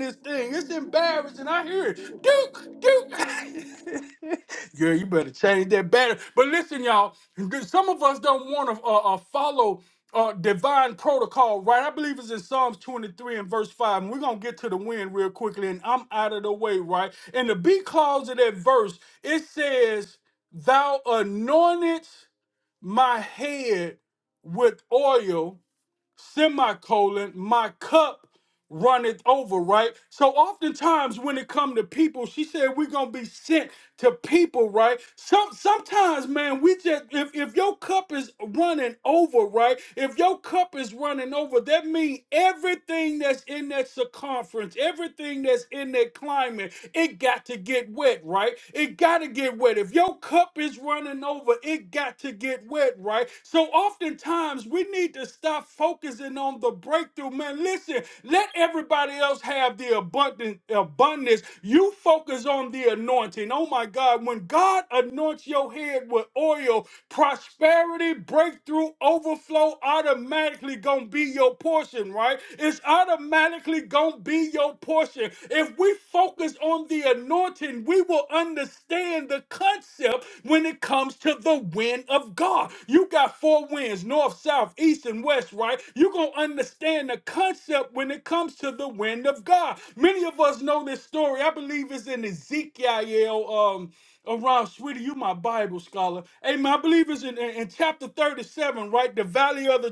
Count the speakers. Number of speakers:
1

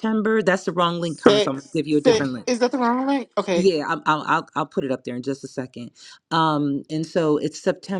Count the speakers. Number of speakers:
2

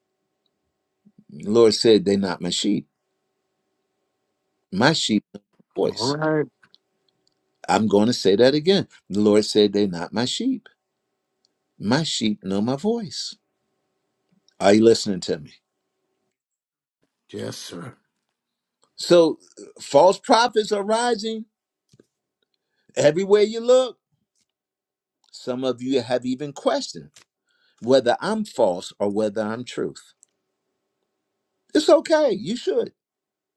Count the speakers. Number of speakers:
2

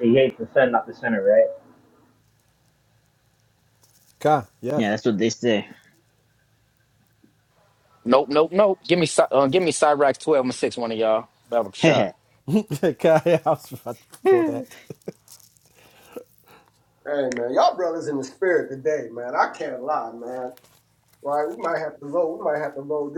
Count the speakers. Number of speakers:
5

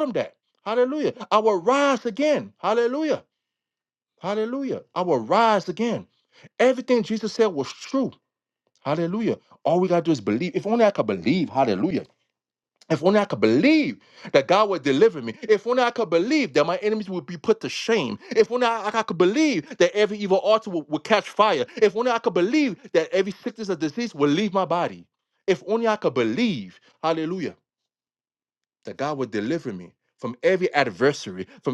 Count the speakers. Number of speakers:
1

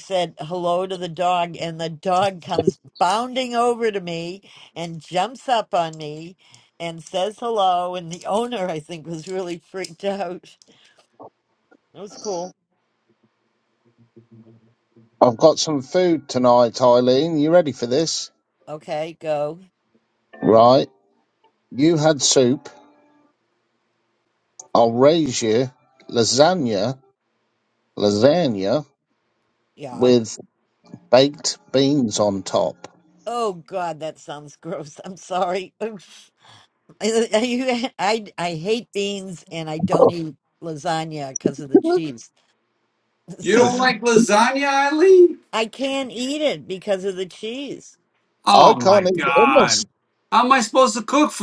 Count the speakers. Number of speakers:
3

